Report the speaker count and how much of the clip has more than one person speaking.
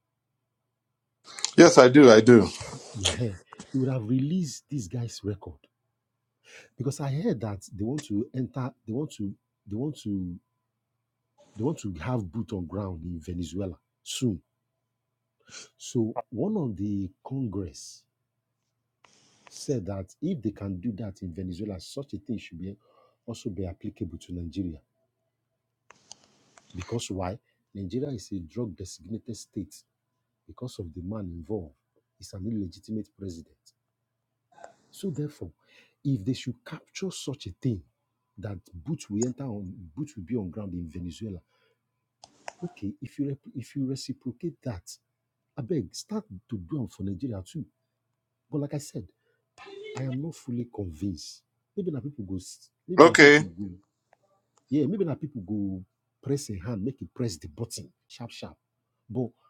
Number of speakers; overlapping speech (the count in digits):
2, about 1%